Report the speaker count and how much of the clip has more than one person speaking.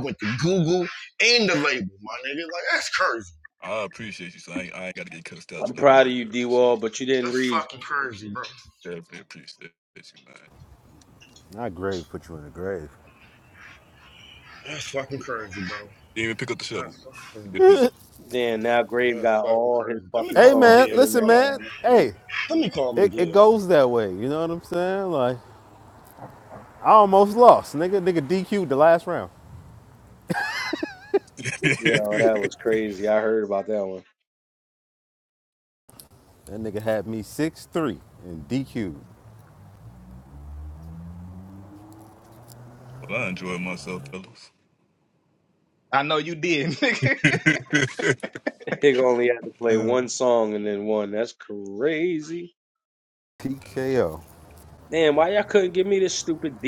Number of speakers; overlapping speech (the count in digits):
5, about 10%